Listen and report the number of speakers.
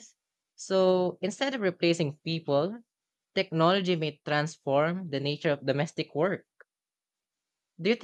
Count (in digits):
1